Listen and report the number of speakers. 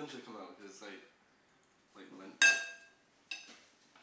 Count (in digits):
1